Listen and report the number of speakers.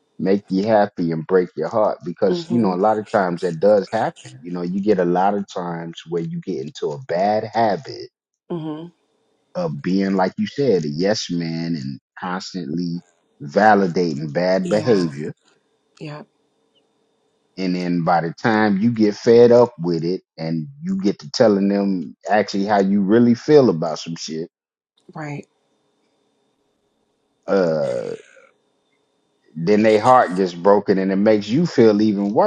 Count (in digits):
2